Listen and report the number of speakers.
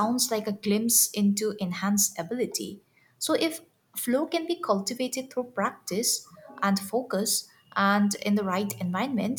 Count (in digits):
1